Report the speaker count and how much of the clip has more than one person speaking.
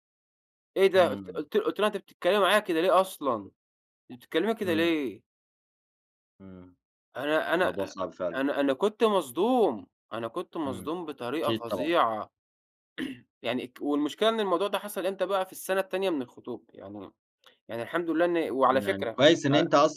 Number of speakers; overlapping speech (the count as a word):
two, about 14%